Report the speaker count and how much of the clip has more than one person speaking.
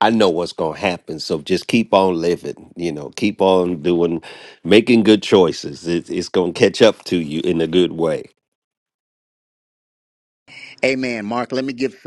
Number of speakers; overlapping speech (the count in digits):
2, no overlap